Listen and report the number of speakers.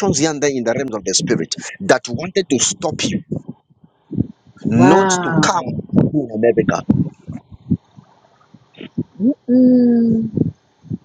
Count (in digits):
2